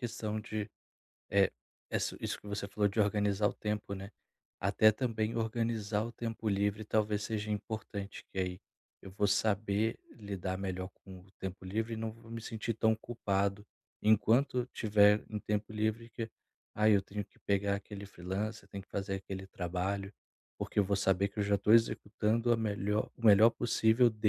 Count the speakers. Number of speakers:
1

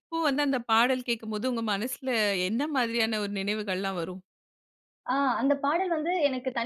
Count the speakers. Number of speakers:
2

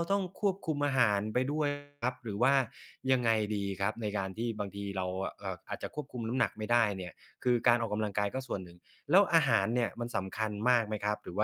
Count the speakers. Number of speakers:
1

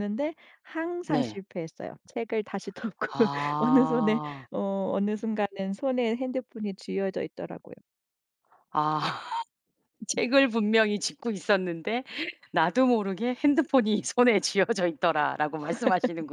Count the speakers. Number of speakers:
2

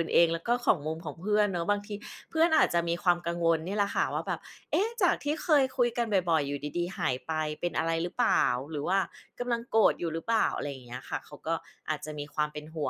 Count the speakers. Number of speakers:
1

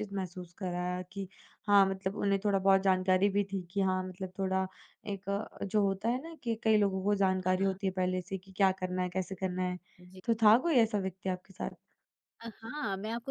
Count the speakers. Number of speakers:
2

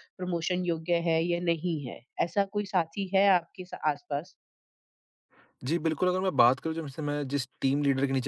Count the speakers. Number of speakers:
2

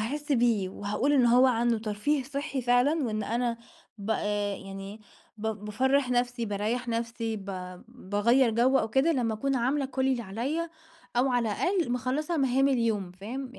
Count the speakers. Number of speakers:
1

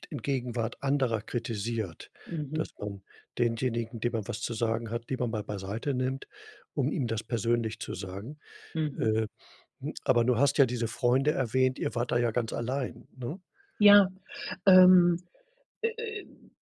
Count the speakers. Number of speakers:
2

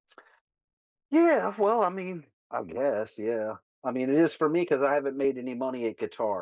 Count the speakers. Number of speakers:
1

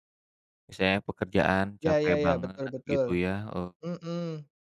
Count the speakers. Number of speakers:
2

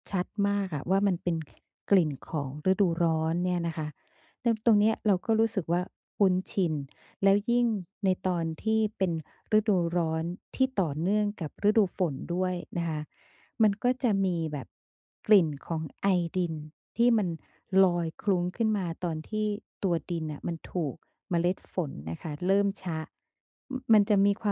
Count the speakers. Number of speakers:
1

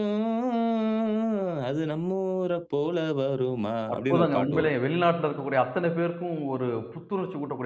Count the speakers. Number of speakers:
2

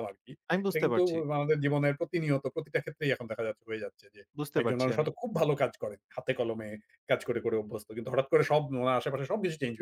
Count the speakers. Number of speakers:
2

